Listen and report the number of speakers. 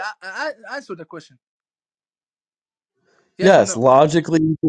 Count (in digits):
2